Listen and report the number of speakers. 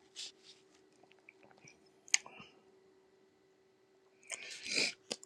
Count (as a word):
zero